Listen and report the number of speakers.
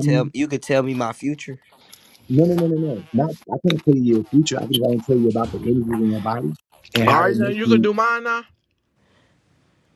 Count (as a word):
three